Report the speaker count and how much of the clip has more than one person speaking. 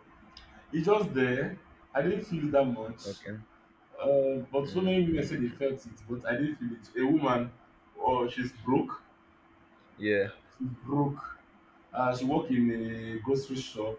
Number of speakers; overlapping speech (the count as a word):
two, about 5%